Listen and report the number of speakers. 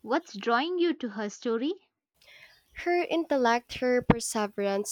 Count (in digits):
2